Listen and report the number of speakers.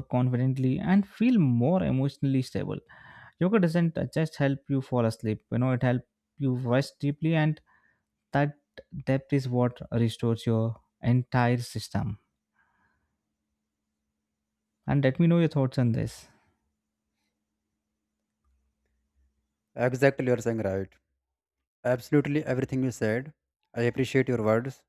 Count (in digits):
2